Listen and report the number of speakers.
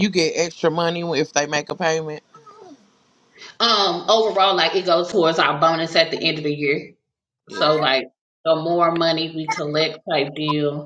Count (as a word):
two